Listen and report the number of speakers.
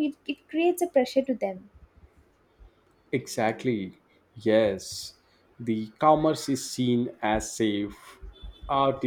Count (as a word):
two